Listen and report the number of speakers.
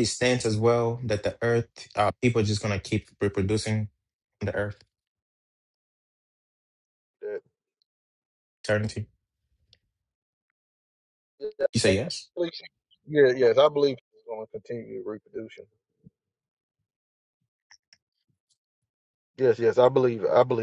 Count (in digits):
2